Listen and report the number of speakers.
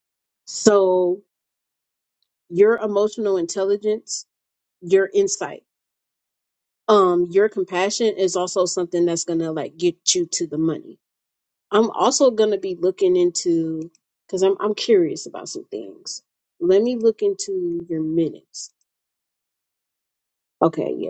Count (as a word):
one